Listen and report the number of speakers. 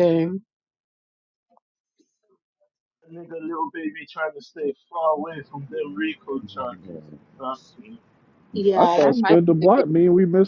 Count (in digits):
3